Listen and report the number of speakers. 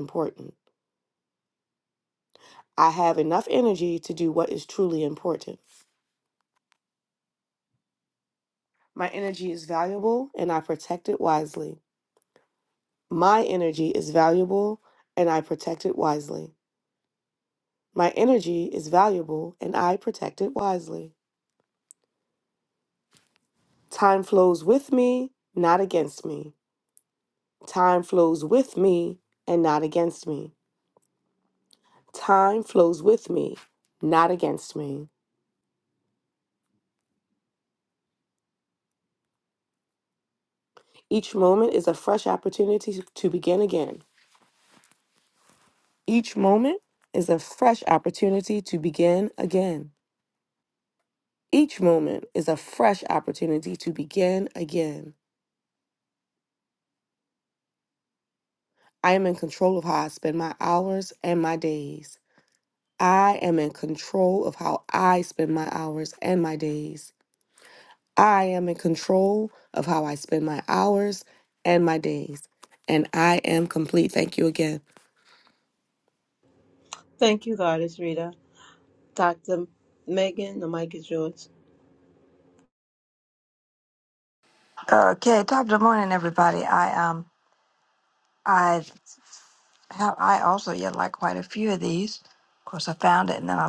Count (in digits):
3